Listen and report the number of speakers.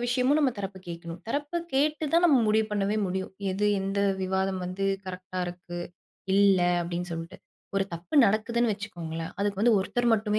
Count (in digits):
1